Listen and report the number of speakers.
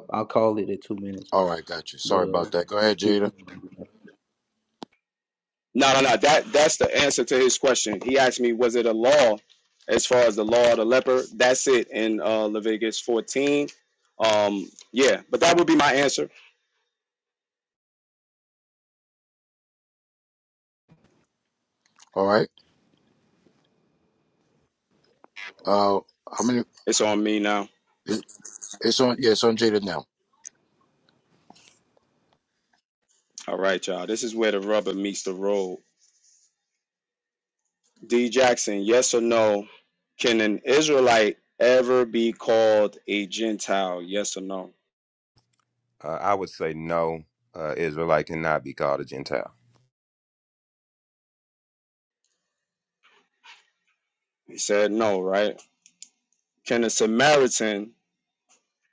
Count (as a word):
four